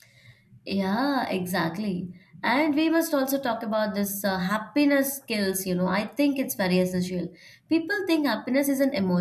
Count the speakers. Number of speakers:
one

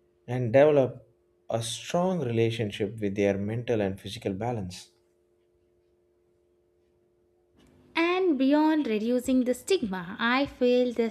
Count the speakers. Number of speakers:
two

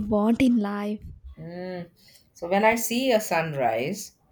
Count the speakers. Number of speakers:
two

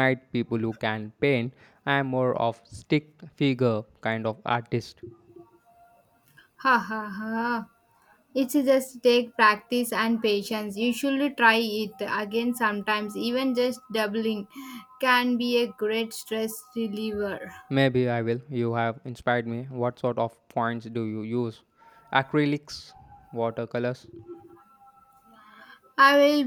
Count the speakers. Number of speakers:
two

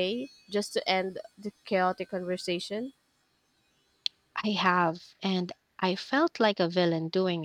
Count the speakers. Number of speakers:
two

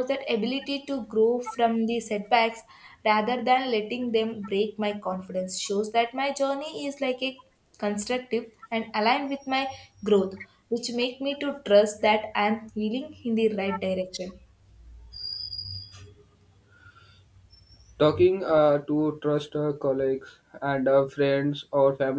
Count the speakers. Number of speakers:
two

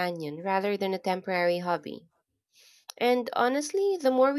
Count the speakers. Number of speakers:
one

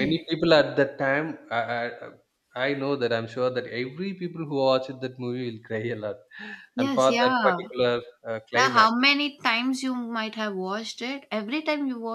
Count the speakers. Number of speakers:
two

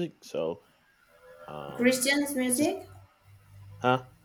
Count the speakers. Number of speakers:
two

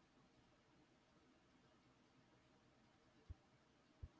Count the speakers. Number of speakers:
zero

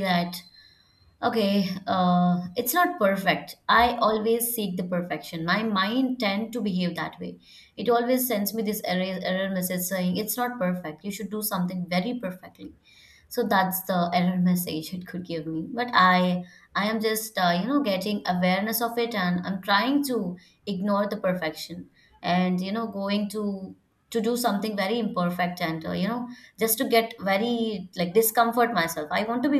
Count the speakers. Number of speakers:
one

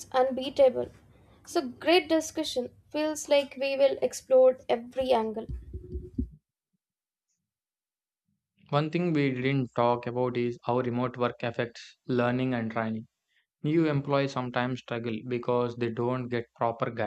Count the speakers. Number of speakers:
two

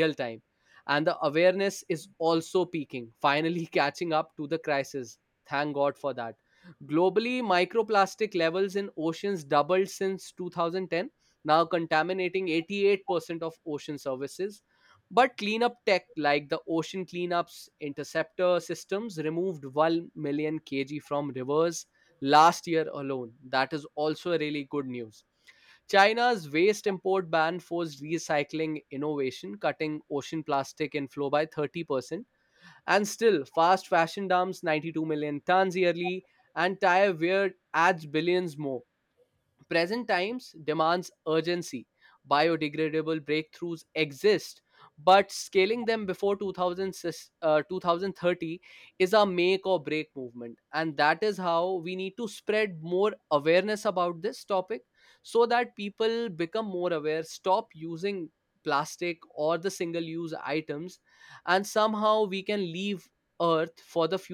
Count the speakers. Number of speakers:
one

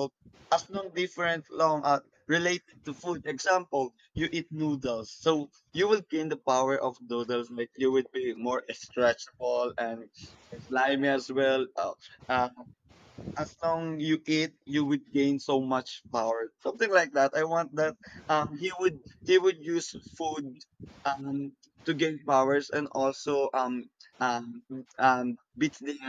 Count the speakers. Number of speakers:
one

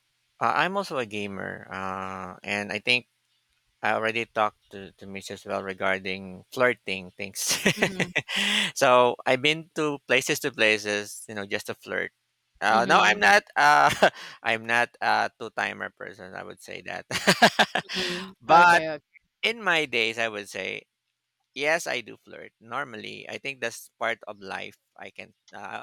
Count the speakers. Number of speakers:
two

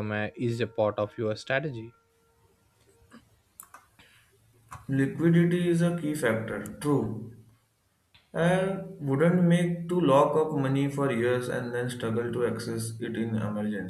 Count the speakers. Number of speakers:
two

